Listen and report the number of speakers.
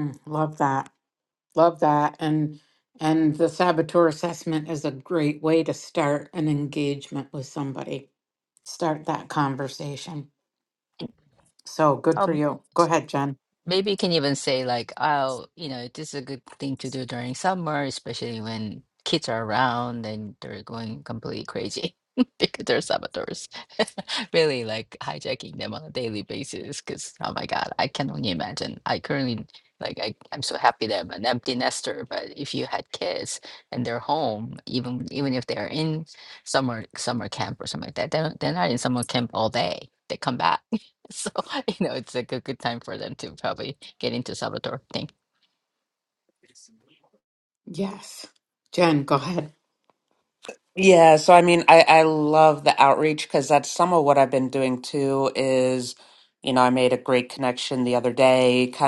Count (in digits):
3